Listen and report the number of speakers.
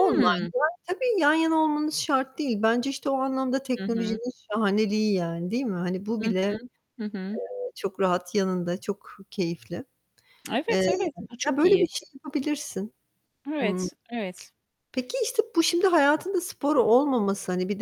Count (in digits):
2